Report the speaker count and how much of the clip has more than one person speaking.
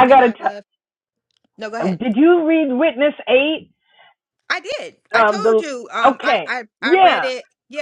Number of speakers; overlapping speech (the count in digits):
2, about 26%